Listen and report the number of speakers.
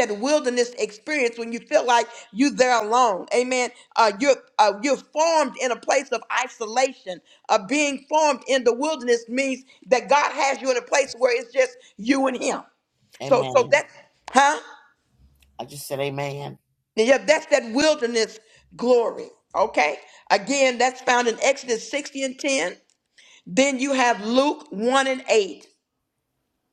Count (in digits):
2